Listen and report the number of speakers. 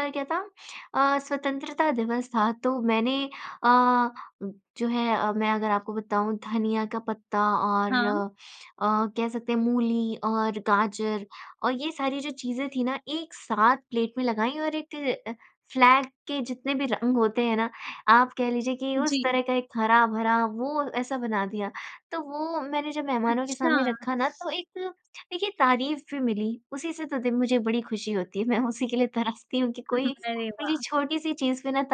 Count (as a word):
two